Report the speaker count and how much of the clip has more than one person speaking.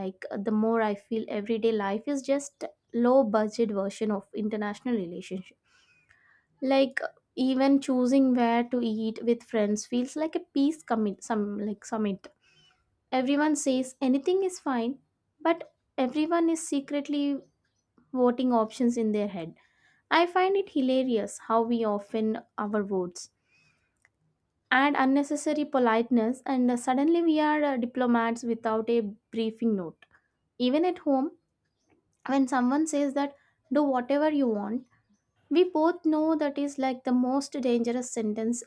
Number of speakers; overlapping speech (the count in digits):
1, no overlap